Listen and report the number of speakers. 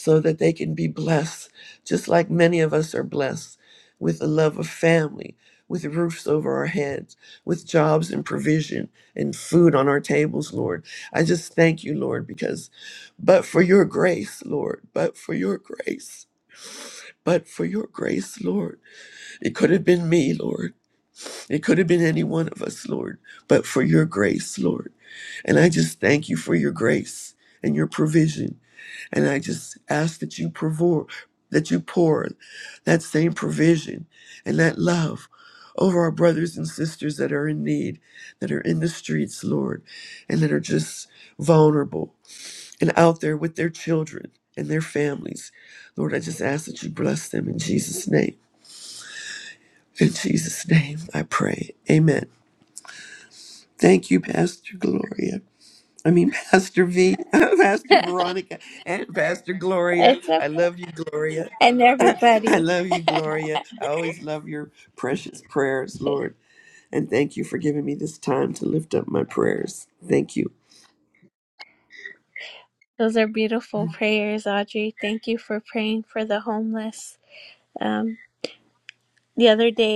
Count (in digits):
2